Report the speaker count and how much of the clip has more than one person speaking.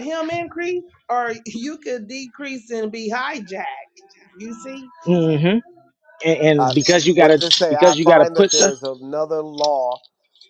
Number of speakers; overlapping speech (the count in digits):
3, about 16%